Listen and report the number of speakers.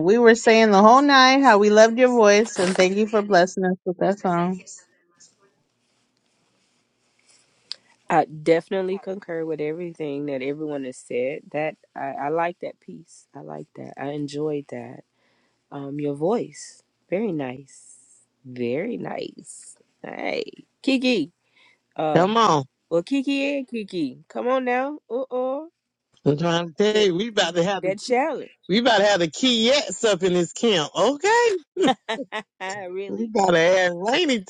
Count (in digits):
3